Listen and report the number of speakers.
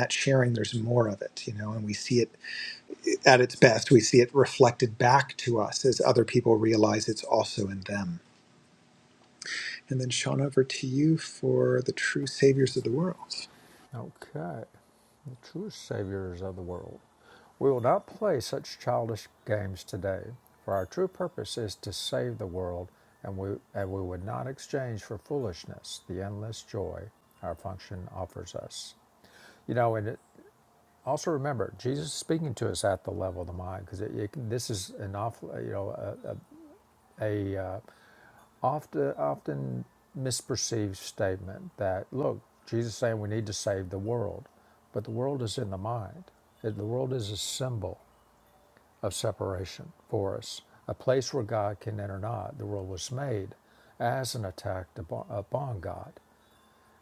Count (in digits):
2